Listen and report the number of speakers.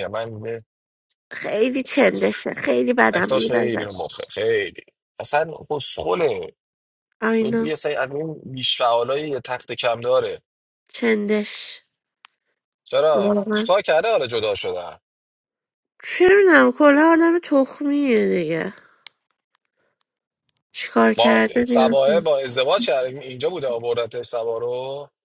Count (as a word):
two